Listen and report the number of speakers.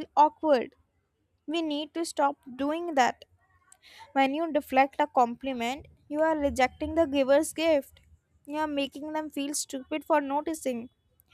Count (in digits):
1